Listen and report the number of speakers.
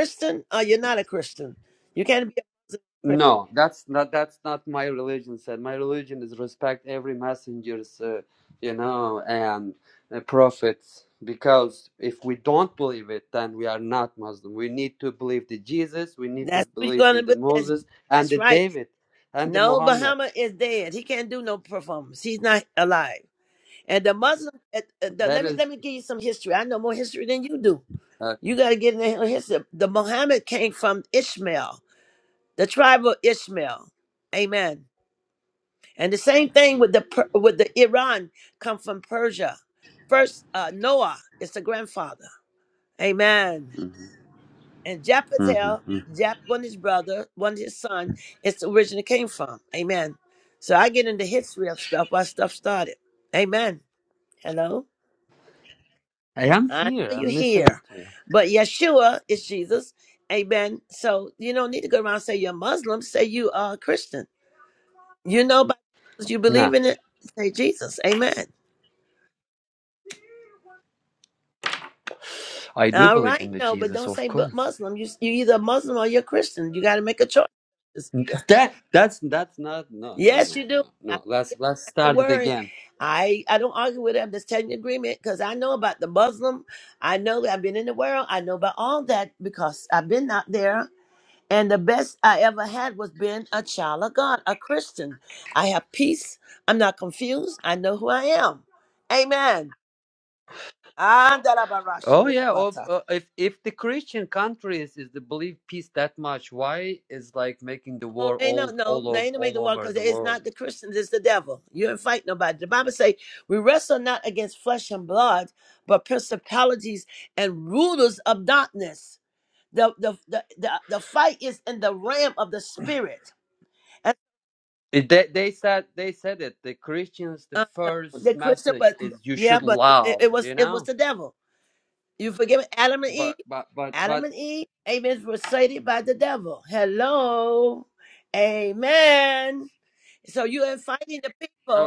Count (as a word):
two